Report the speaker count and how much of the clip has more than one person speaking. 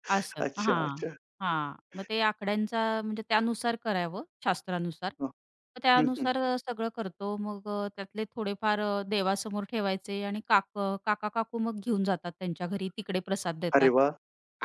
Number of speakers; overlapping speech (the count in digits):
2, about 8%